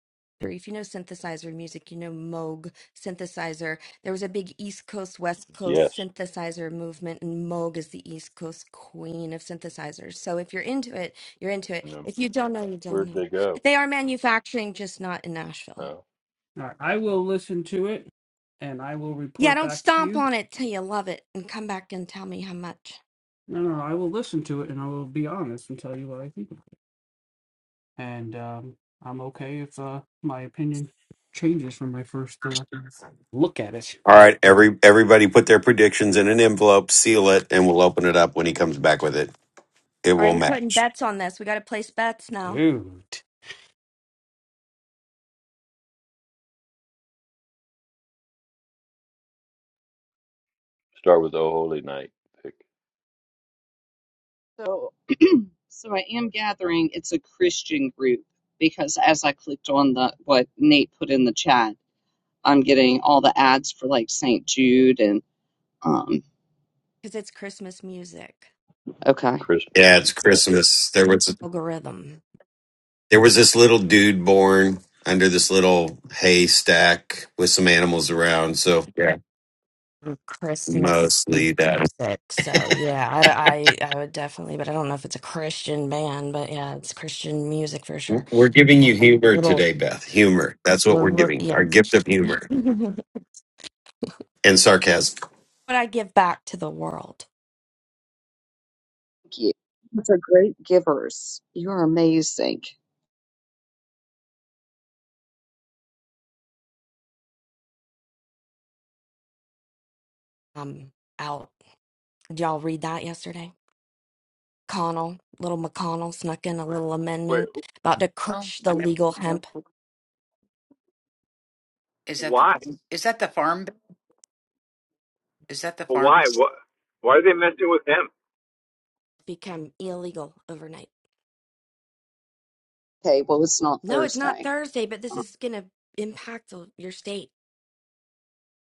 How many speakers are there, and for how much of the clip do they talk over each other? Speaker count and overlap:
7, about 5%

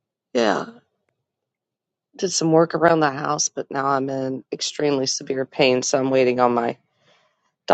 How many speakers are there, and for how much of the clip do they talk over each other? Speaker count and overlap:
1, no overlap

